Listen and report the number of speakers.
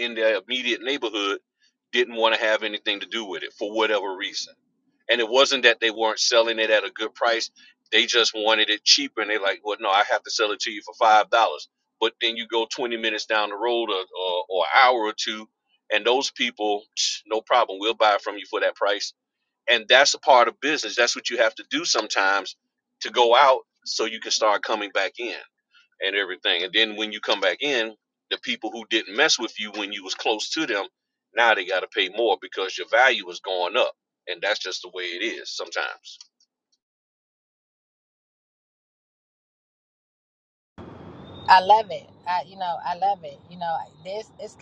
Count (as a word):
two